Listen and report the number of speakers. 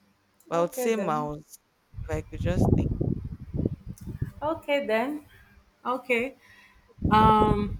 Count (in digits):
2